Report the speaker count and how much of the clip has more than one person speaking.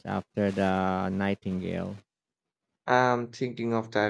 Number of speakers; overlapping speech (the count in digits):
2, no overlap